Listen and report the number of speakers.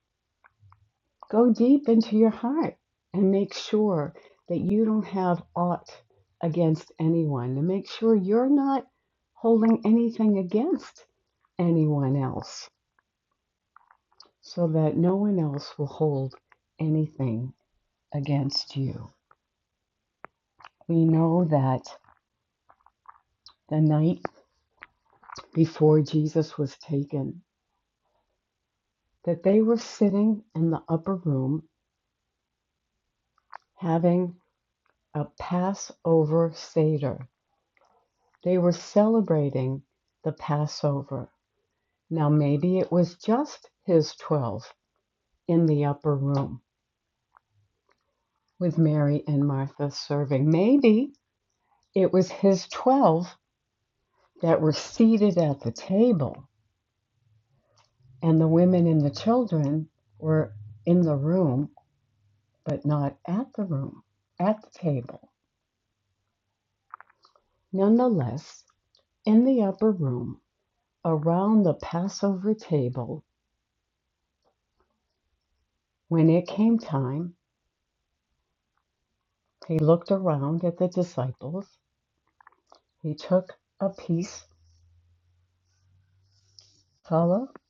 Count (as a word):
one